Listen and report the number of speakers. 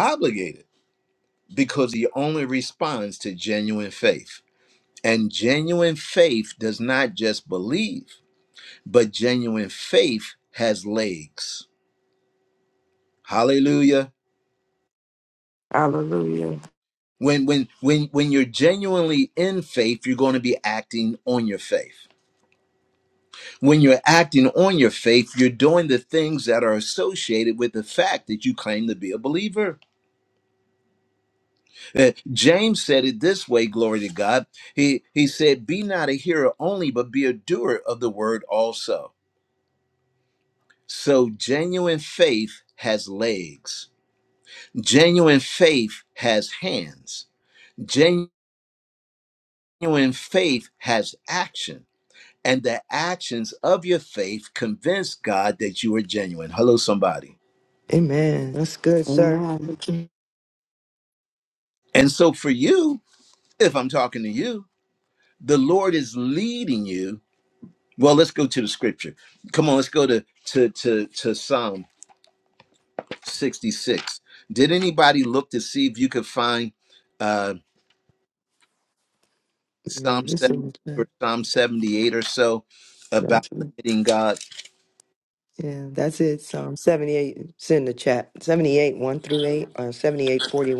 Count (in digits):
3